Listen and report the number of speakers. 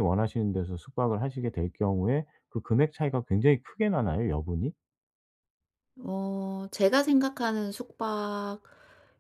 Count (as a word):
two